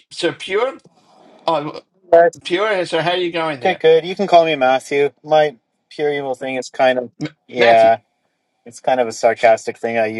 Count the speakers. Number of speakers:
2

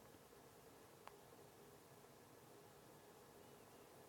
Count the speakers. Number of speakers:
0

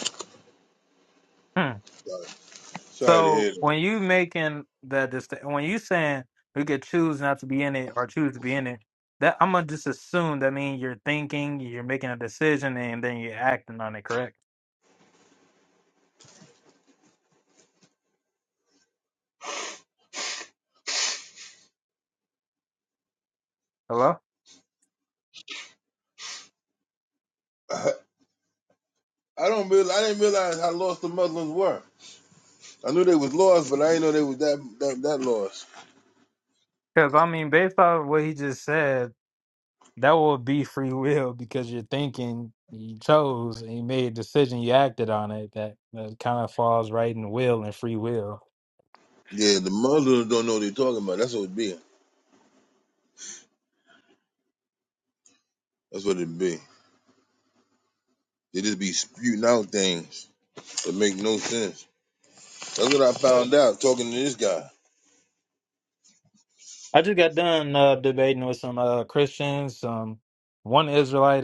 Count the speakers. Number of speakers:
2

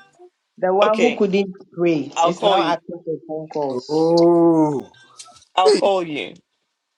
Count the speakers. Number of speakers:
3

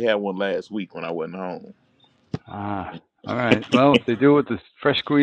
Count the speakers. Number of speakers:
2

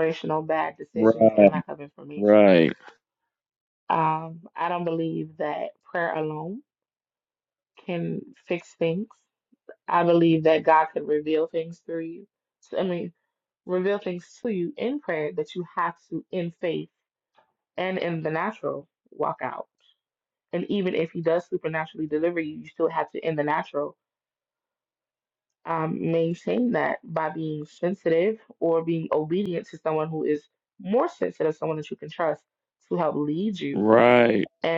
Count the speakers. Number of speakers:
2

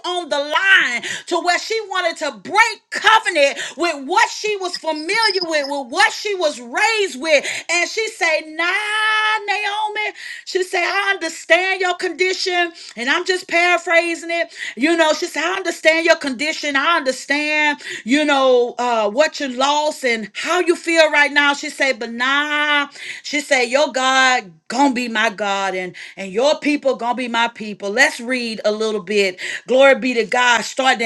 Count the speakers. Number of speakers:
1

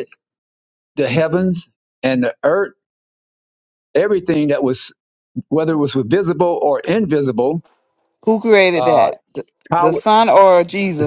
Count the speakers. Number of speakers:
2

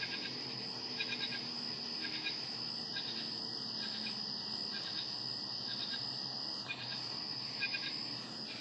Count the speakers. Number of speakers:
0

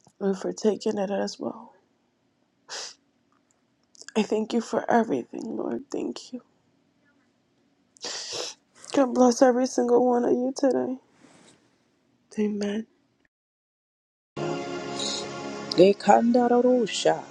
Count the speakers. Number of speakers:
2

